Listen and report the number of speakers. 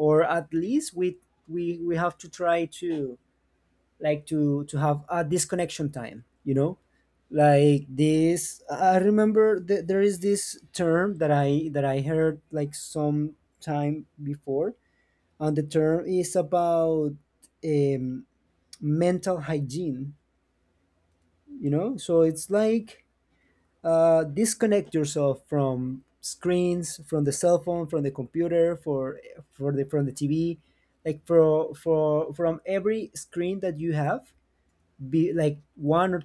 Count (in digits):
1